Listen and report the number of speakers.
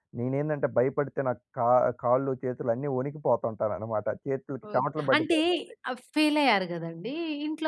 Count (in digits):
2